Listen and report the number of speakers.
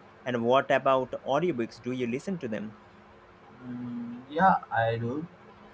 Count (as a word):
two